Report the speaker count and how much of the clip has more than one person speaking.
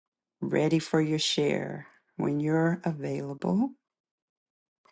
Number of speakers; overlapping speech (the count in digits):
1, no overlap